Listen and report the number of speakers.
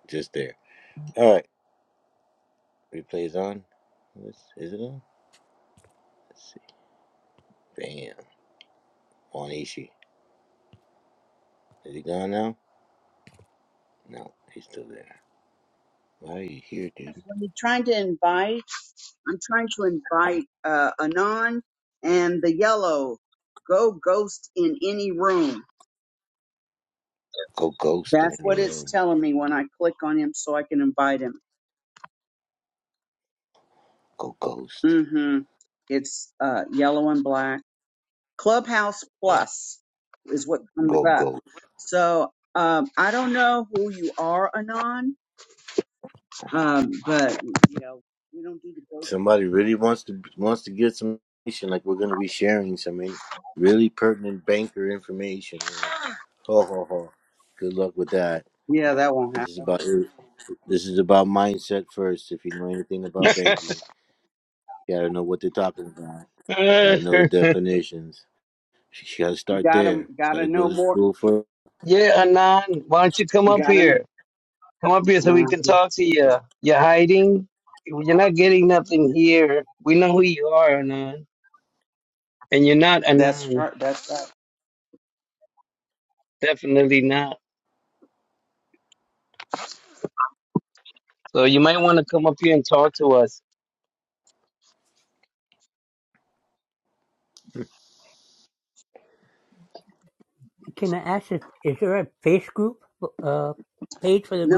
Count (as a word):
four